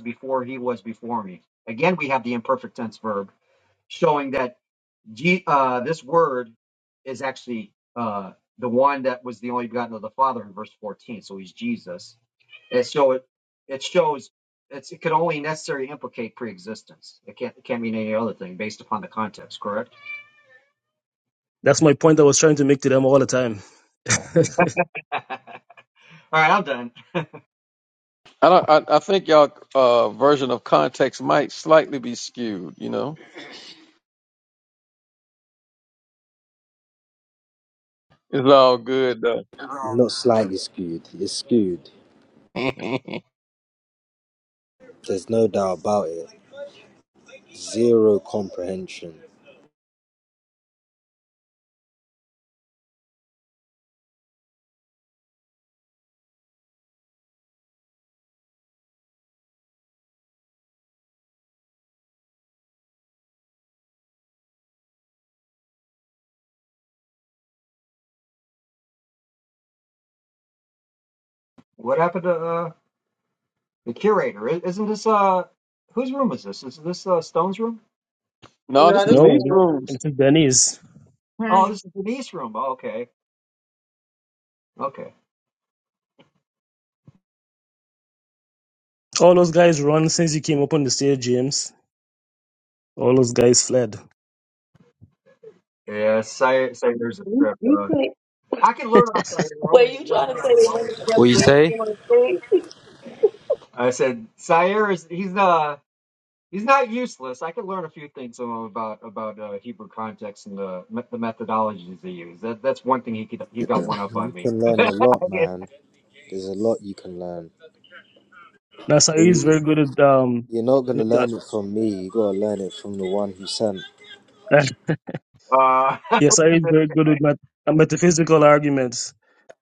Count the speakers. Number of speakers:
5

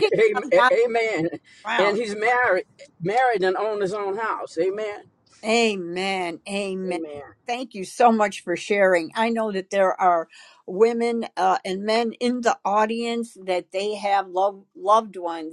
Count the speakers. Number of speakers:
2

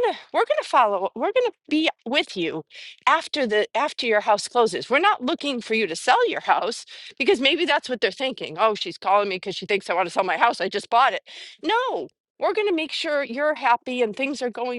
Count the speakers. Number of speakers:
1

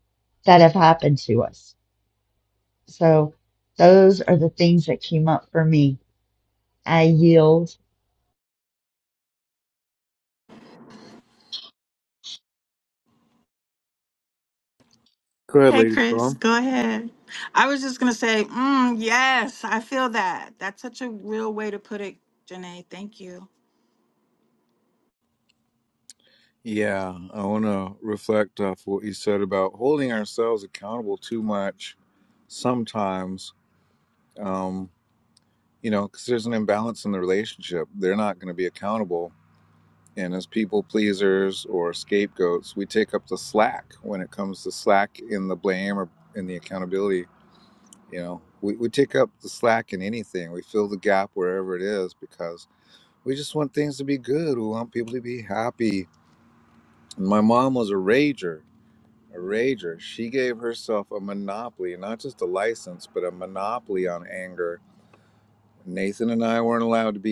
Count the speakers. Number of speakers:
3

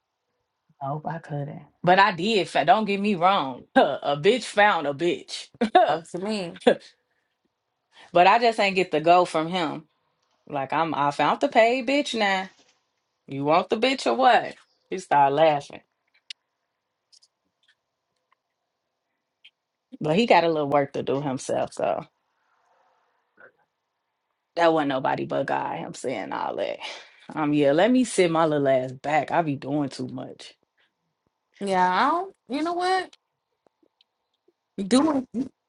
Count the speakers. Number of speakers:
2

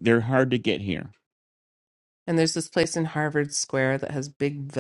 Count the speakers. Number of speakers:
2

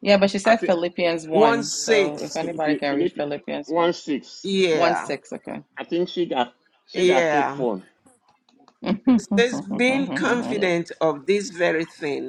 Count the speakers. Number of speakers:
3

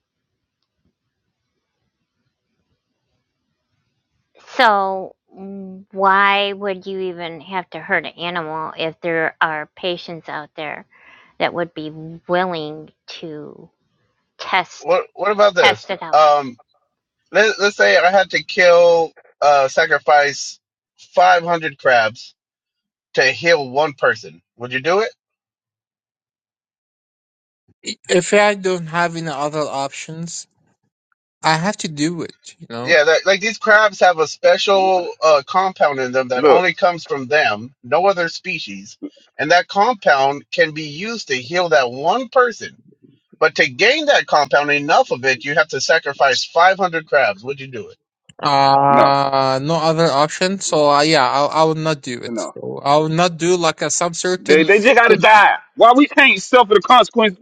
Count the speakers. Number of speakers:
4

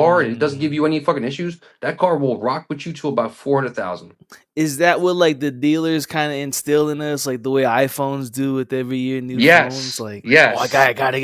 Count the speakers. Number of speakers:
2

